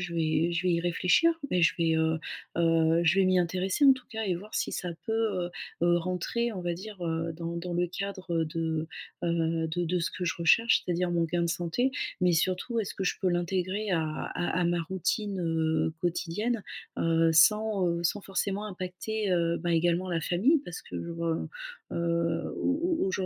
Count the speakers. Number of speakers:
1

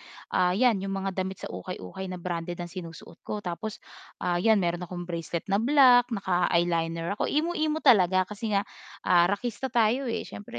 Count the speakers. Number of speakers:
1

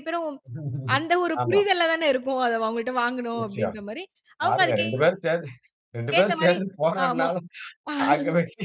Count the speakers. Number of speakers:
2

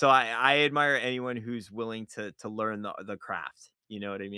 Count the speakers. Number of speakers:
1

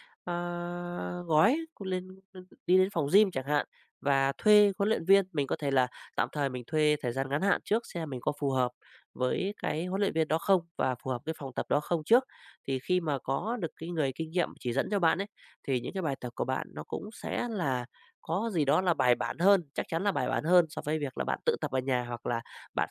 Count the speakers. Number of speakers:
1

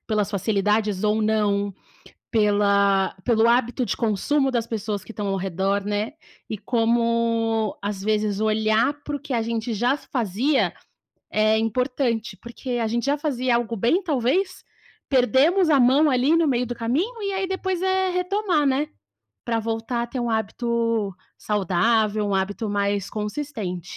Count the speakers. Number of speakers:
1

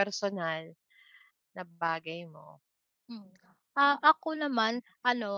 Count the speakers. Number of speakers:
2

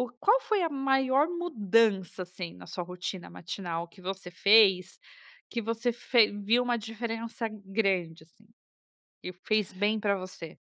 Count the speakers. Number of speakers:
1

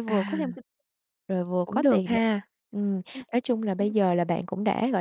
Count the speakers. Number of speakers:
2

